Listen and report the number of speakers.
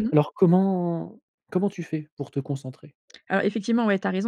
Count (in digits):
2